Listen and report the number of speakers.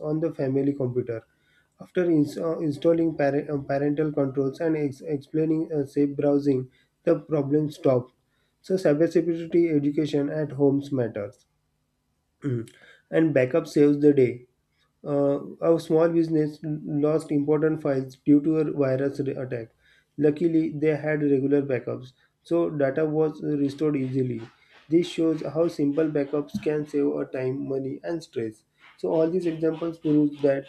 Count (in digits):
1